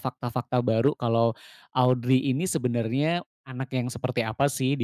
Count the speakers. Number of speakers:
1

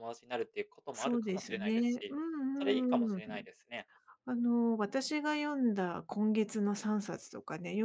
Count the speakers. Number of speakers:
2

